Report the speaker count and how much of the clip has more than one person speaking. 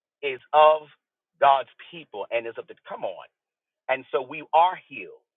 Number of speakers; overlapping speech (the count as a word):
one, no overlap